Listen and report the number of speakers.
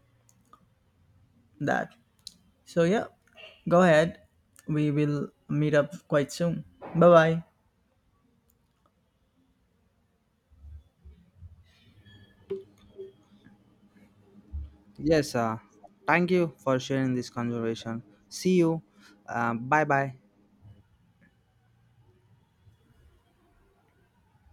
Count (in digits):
2